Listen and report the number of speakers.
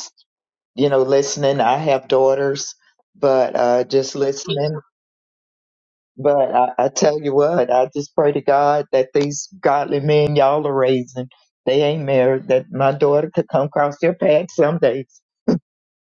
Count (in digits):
1